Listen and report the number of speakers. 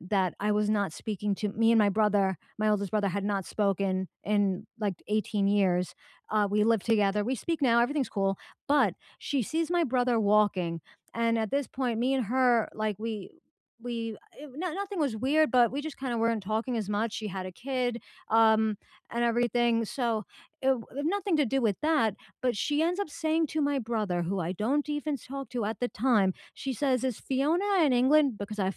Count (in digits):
1